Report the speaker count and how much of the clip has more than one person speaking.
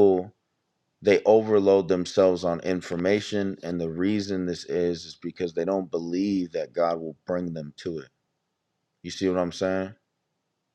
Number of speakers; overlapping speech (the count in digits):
1, no overlap